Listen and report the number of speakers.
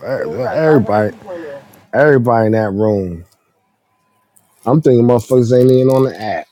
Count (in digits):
2